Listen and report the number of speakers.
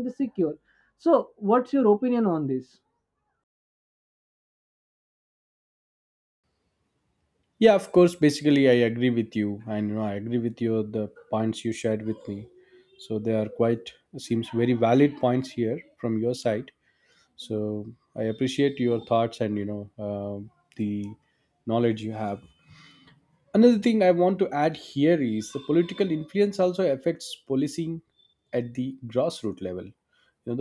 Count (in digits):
2